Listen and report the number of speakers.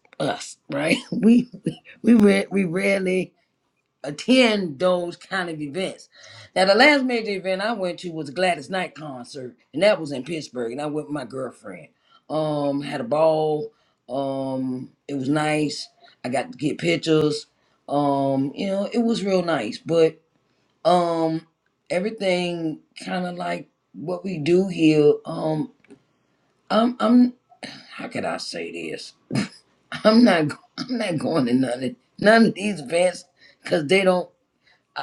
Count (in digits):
1